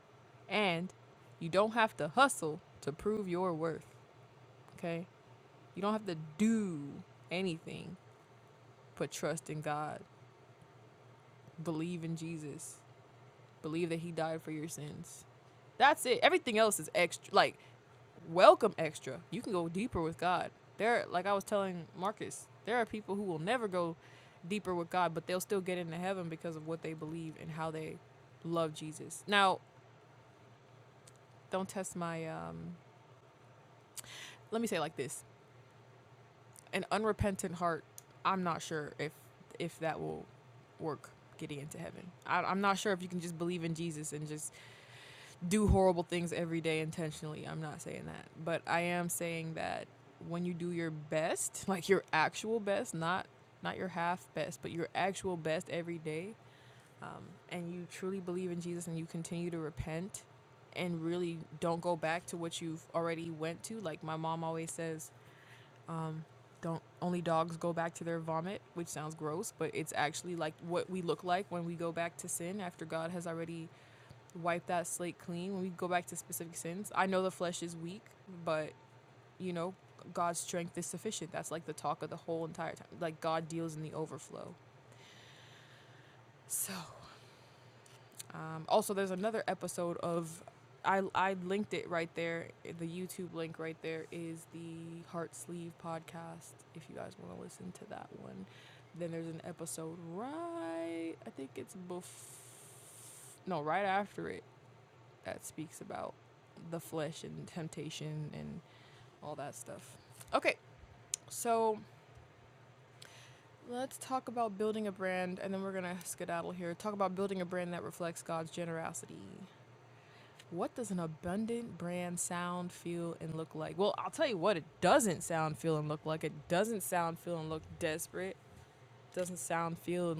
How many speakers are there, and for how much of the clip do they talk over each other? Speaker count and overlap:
1, no overlap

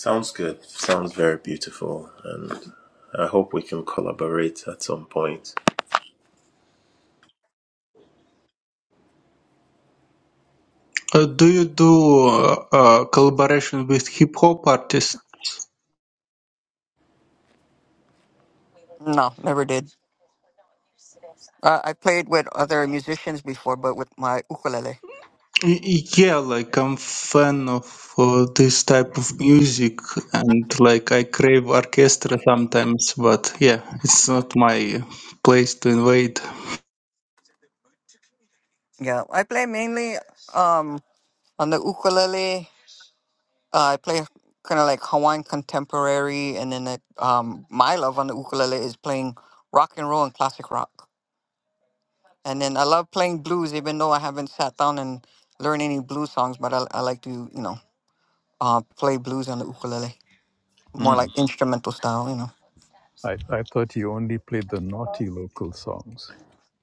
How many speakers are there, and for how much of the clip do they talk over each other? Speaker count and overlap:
4, under 1%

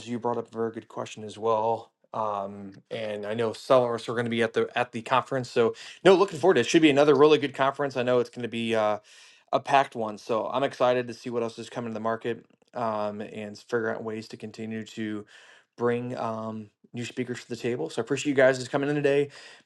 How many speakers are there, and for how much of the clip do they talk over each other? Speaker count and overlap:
1, no overlap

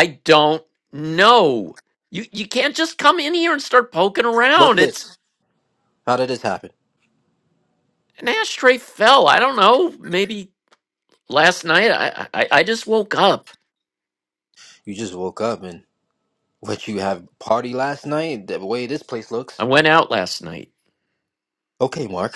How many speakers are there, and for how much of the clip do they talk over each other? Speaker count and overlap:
2, about 2%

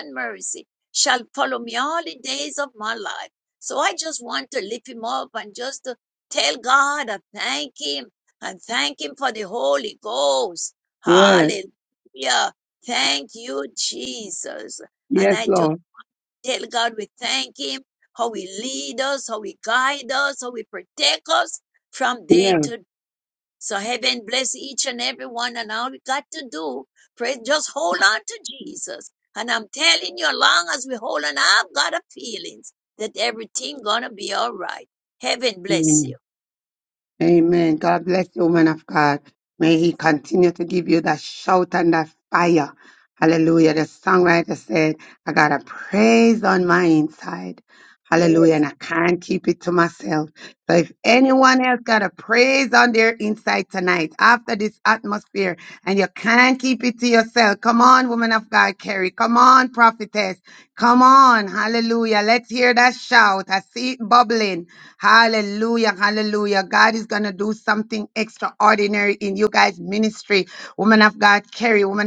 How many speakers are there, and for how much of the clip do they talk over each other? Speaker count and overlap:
2, about 3%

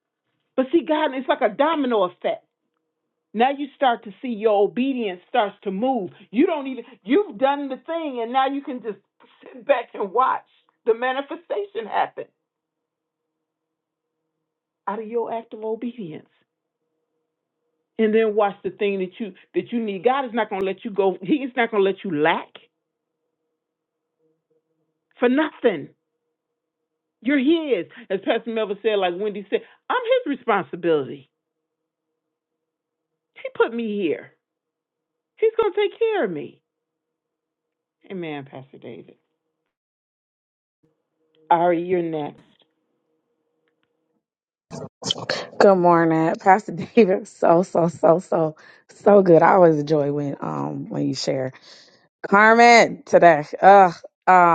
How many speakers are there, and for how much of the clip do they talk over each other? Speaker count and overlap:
2, no overlap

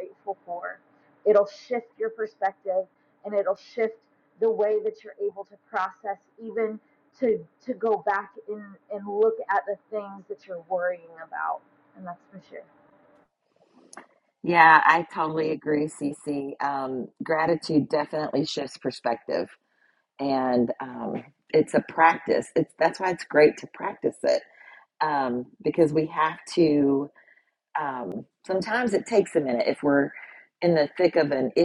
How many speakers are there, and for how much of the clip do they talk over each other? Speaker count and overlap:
2, no overlap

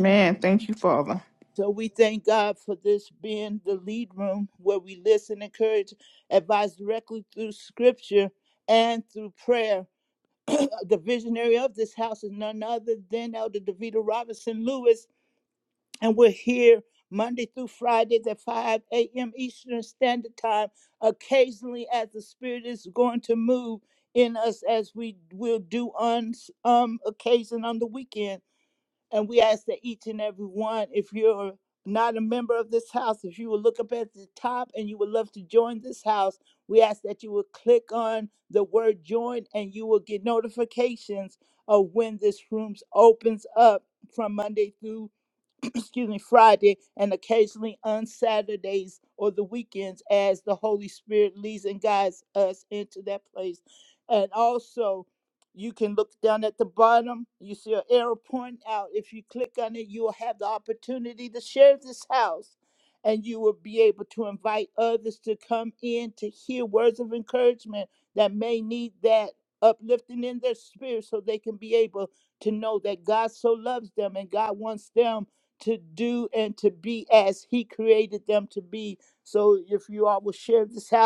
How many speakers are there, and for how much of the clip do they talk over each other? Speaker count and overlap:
2, no overlap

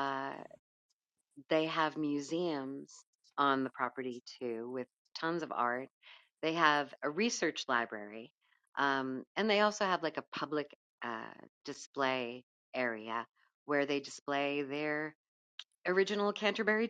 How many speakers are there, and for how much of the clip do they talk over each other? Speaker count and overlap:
1, no overlap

